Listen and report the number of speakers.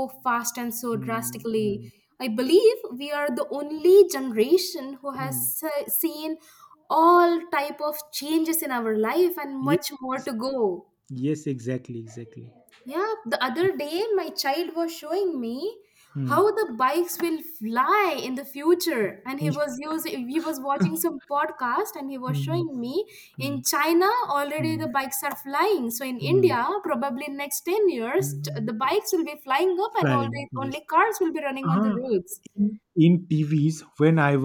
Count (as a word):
two